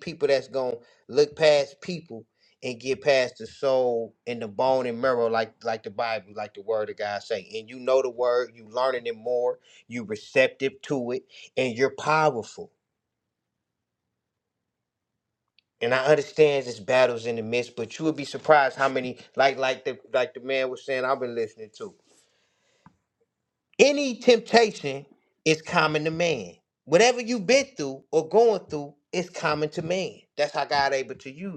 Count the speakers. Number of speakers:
1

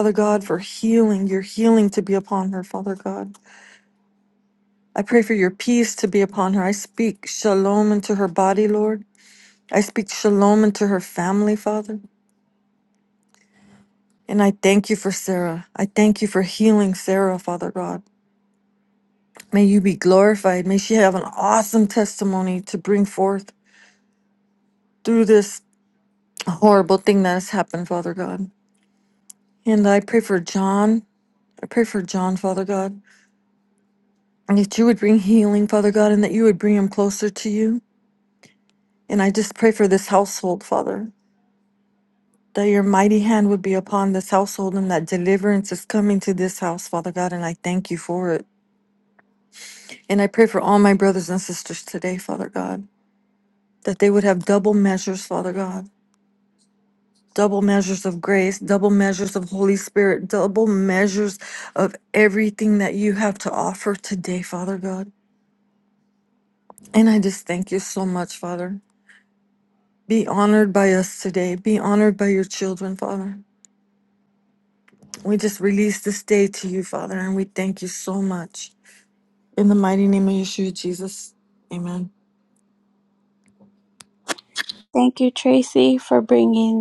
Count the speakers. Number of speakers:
2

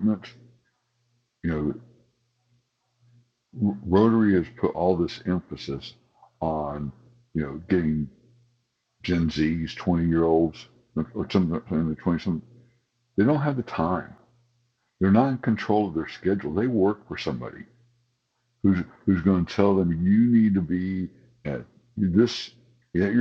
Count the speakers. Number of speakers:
1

